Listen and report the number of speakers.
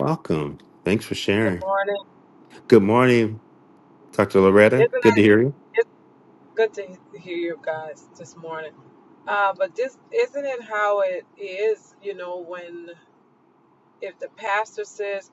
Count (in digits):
2